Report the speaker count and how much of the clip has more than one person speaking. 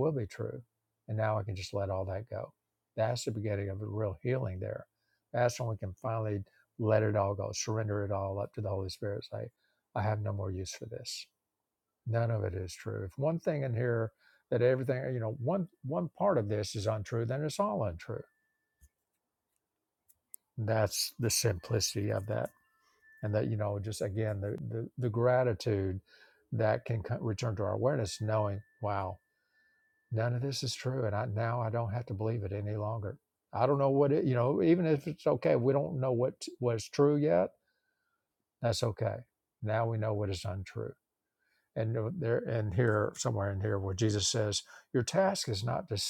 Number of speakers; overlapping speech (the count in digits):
1, no overlap